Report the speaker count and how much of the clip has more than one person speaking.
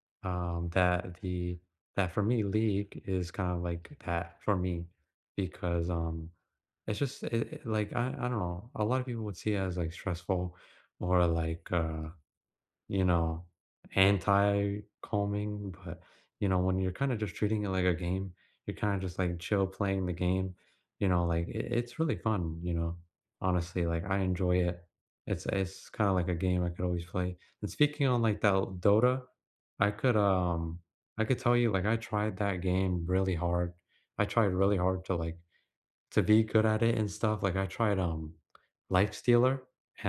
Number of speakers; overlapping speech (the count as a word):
one, no overlap